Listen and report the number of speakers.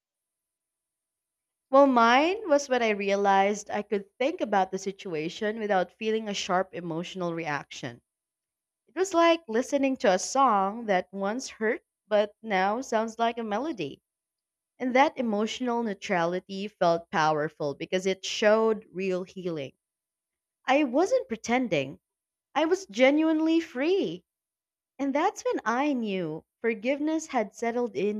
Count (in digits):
1